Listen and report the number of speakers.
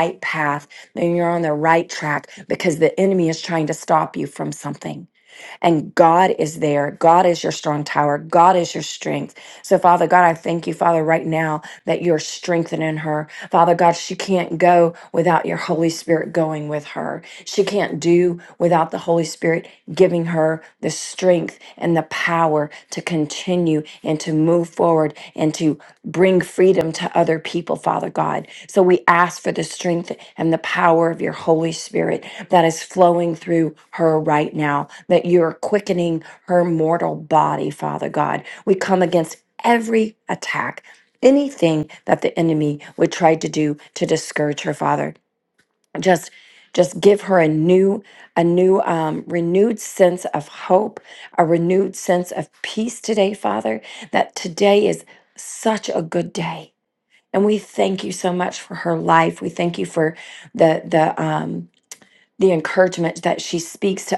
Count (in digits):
1